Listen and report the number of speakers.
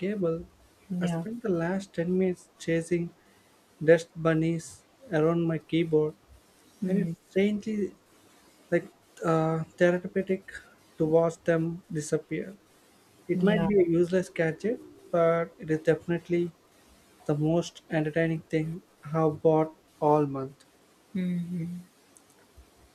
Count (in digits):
2